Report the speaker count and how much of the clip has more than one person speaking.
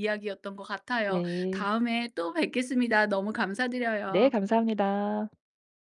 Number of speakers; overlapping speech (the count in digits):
2, about 12%